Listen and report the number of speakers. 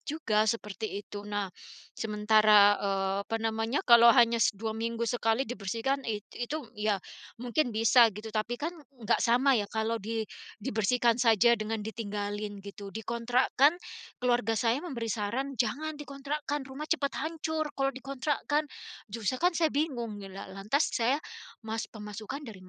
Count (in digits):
1